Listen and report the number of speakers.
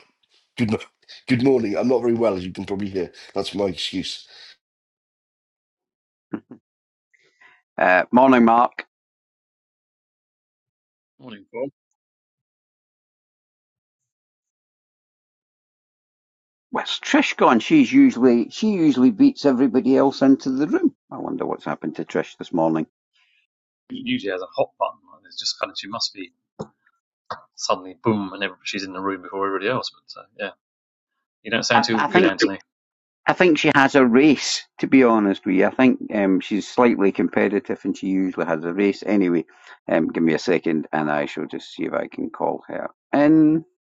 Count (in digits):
3